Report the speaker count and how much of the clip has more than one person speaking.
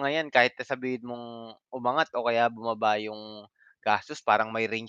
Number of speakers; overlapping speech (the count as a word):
one, no overlap